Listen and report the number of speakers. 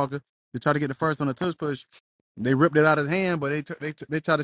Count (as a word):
one